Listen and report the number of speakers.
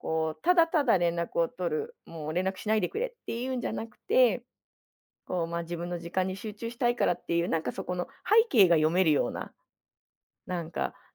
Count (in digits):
1